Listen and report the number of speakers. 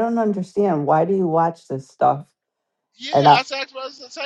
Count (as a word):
two